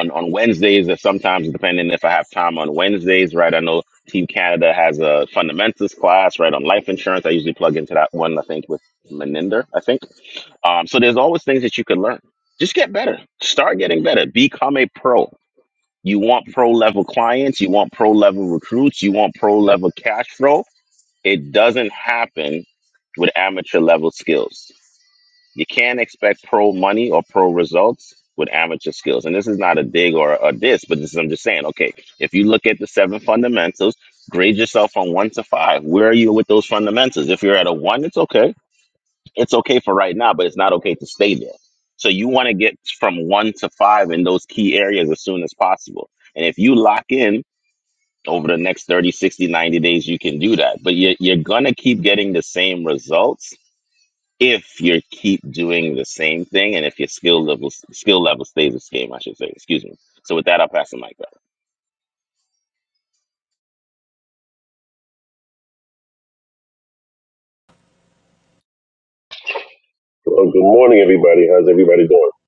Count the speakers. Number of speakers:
2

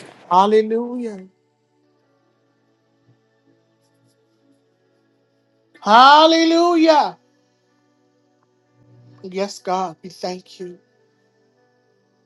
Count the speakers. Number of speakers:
1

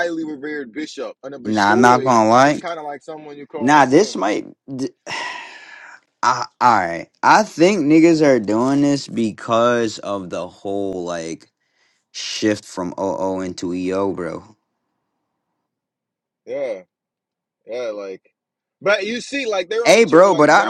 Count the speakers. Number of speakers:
2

